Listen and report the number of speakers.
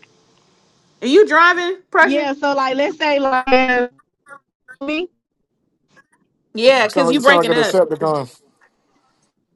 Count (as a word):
three